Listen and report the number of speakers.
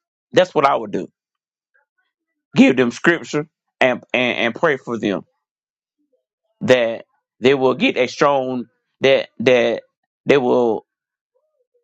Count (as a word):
one